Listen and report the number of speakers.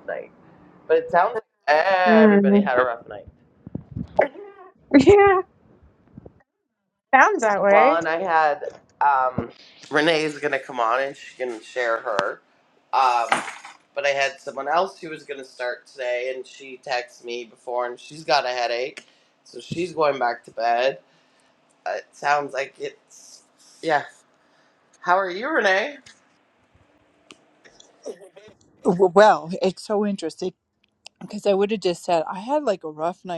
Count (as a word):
three